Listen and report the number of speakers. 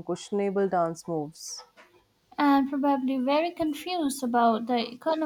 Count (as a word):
two